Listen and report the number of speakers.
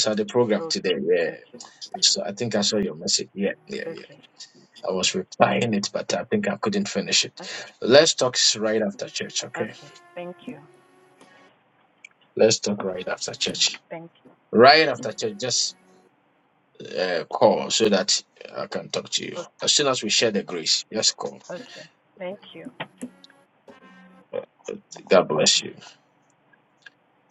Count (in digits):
2